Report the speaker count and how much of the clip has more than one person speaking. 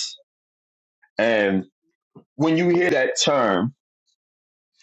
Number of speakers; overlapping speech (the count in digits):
1, no overlap